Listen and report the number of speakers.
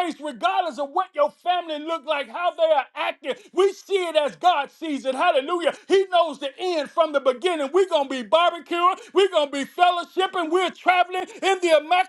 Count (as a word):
one